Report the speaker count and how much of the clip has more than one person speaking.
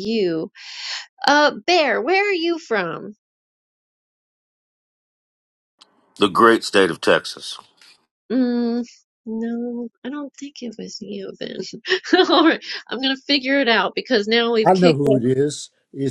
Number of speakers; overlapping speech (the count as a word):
three, about 3%